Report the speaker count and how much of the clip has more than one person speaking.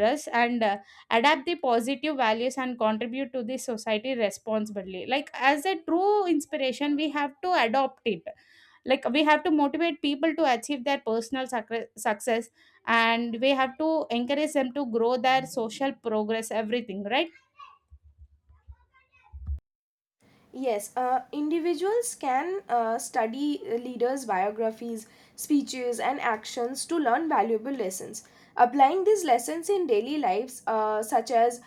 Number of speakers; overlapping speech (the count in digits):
2, no overlap